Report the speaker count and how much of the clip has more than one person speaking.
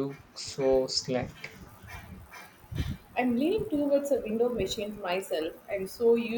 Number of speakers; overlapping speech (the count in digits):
2, no overlap